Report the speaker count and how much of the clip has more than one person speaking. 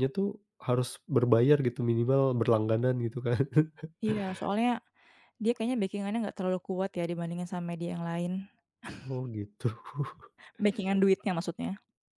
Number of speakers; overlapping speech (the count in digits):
2, no overlap